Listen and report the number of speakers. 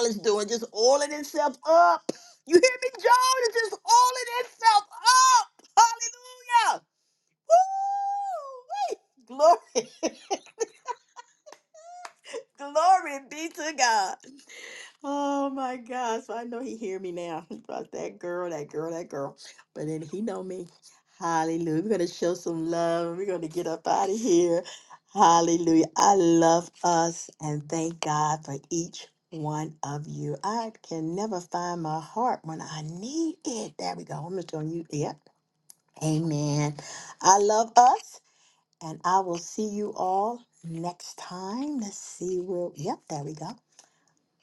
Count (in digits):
1